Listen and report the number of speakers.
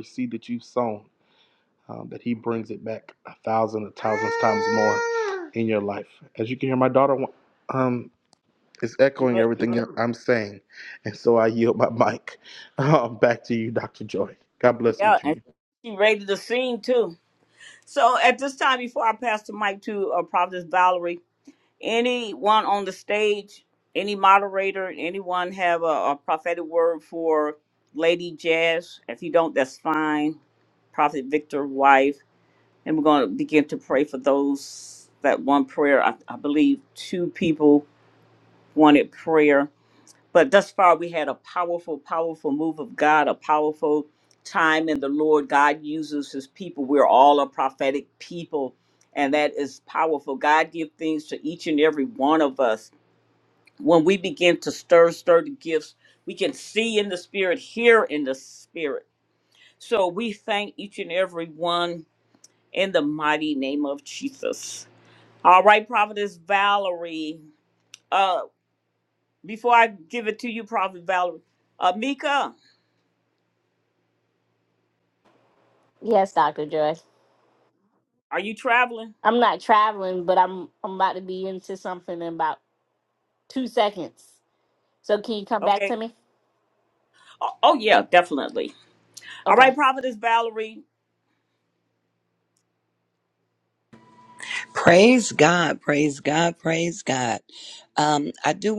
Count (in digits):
4